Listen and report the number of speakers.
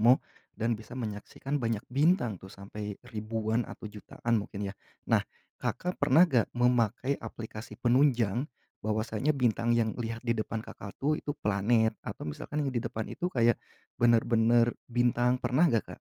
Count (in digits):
1